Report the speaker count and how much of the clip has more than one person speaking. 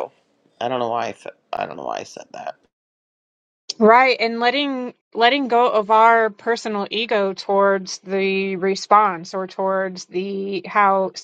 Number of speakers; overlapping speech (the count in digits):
2, no overlap